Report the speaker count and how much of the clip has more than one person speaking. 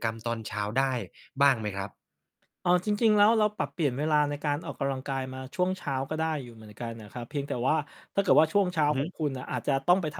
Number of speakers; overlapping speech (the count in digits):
2, about 1%